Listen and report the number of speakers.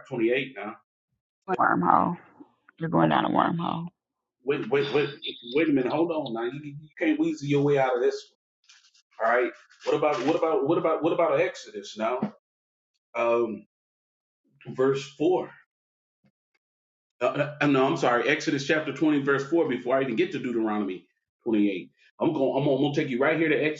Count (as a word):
two